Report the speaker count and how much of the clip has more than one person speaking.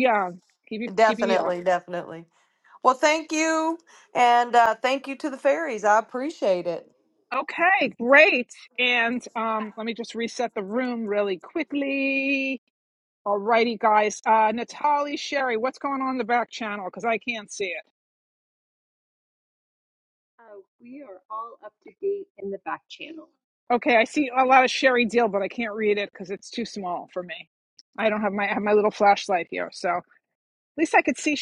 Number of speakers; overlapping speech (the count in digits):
3, about 2%